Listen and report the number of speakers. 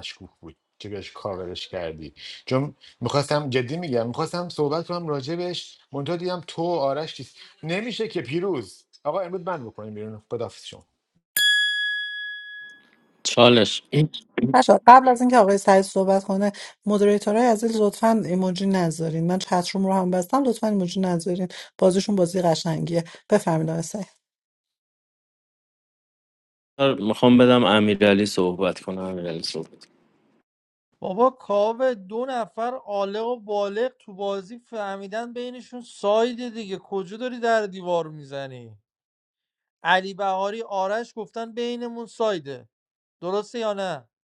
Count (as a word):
four